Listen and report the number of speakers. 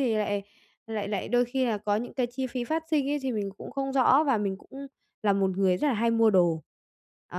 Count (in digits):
1